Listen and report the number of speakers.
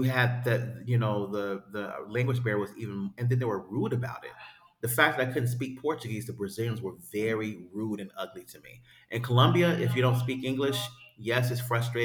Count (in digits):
1